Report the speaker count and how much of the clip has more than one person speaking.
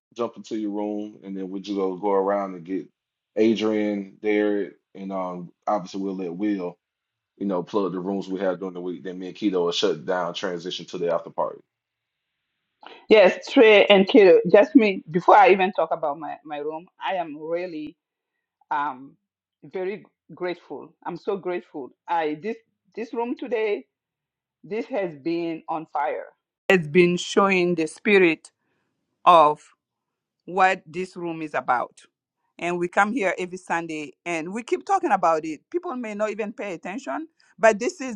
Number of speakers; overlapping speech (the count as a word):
two, no overlap